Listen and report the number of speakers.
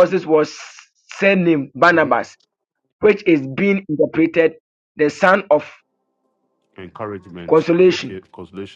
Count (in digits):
2